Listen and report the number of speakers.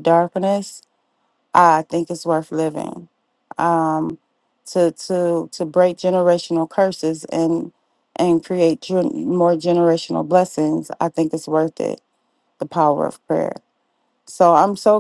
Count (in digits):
1